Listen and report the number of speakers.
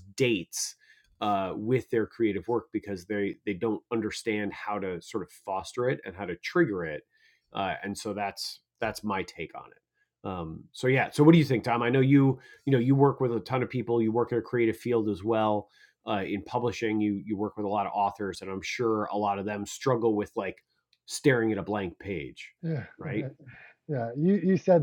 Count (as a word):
two